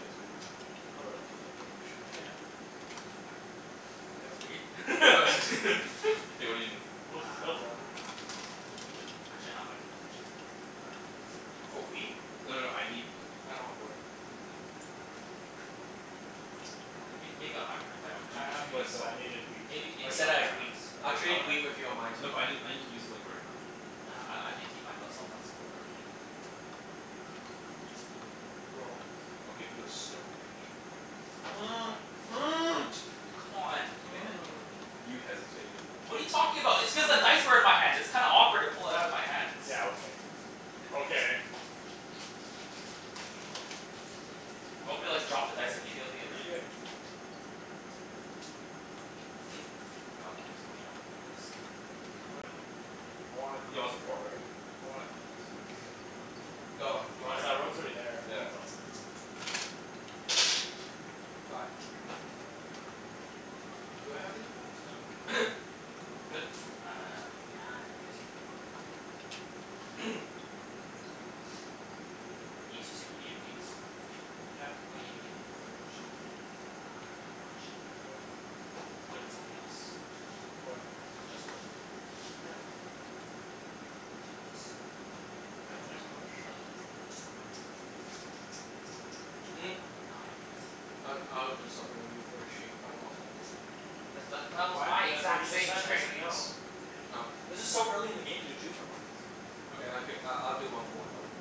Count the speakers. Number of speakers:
4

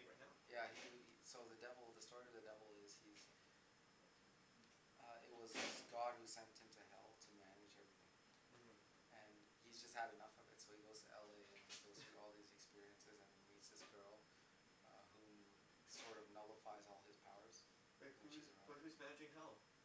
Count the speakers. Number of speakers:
2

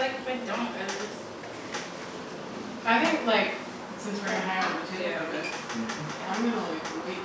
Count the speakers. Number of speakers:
2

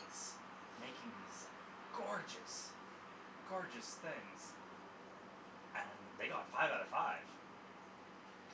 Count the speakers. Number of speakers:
1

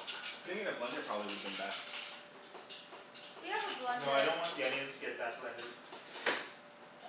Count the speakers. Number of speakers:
3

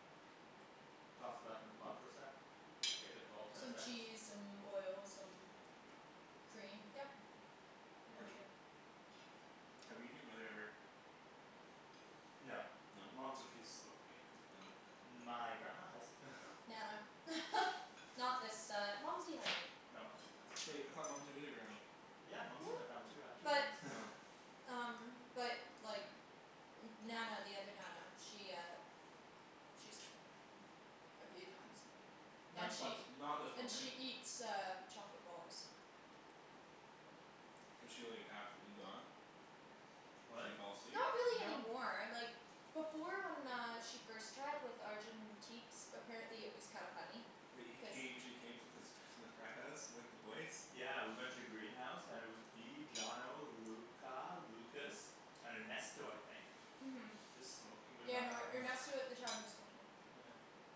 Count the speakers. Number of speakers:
3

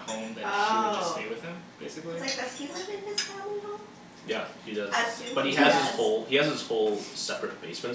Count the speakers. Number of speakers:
3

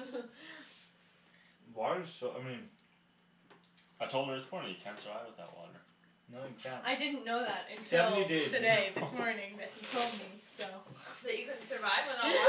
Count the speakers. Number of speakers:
4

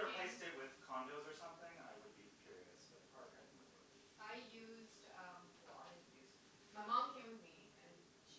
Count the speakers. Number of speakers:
2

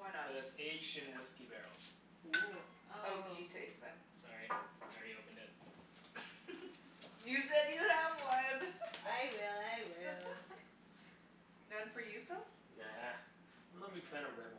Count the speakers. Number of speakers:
4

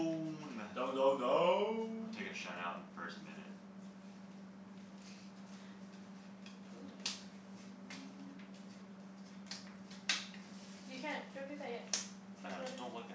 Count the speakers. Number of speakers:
3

